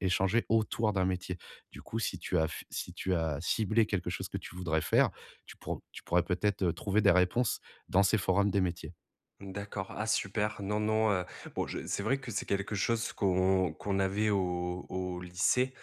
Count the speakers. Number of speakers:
two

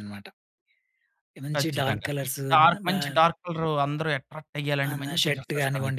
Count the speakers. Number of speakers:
two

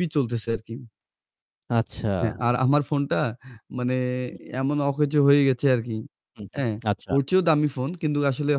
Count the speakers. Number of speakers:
two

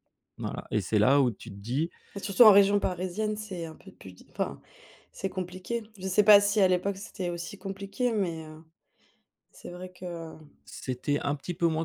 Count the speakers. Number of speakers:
two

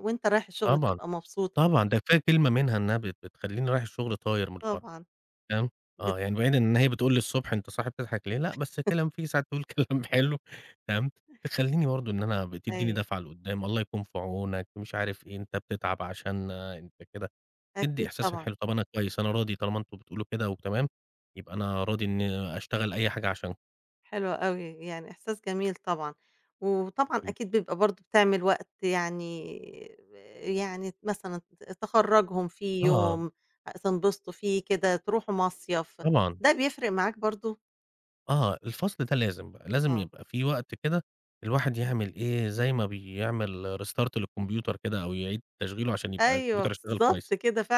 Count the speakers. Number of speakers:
two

